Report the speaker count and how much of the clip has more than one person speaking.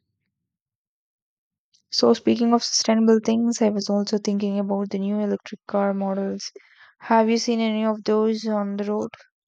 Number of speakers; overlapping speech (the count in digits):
1, no overlap